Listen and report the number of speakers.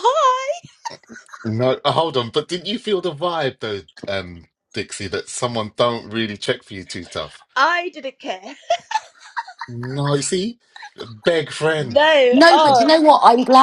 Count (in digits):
3